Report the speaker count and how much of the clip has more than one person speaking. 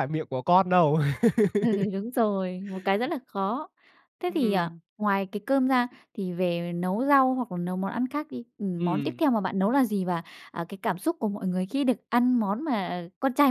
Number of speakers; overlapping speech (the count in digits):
2, about 5%